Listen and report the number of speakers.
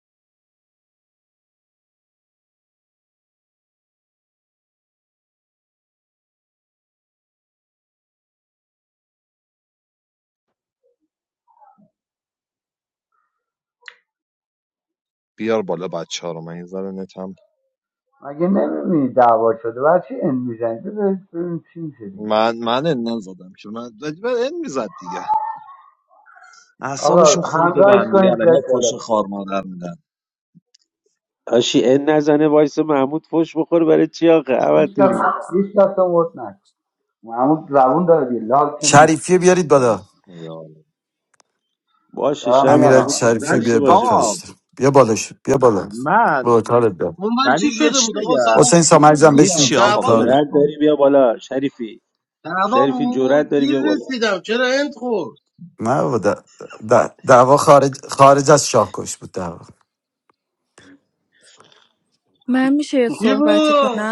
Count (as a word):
six